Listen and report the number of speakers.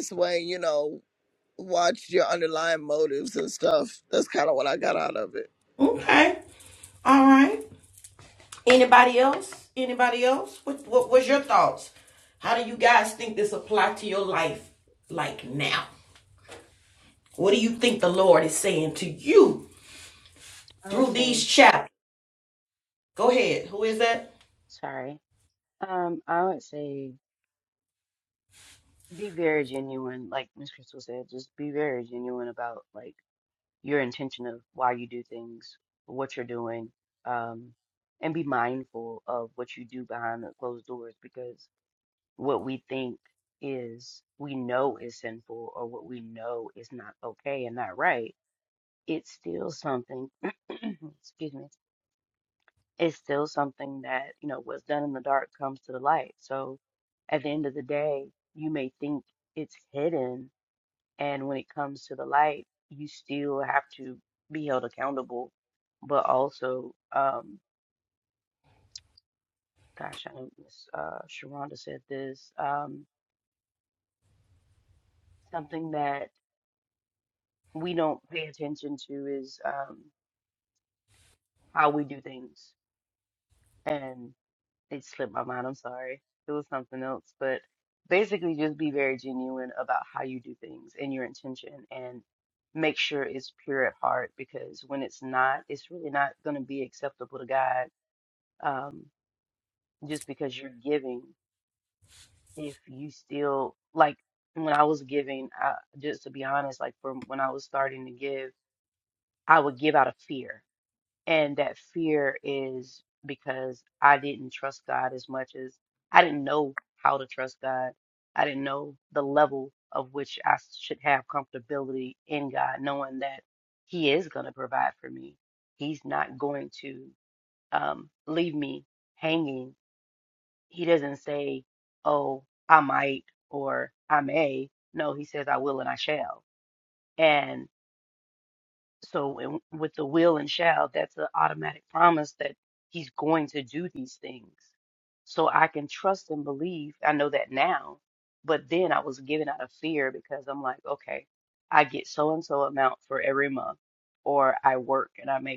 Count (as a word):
three